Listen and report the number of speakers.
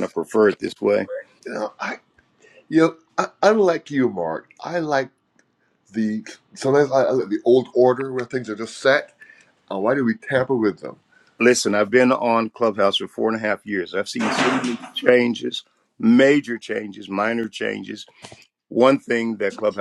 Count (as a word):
two